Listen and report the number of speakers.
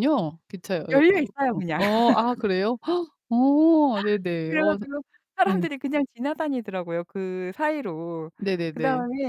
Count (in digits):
2